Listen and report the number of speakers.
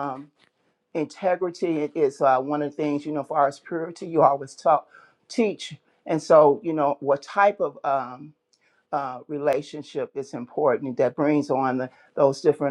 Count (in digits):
1